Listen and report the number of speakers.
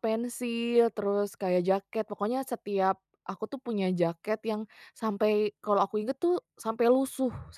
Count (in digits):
1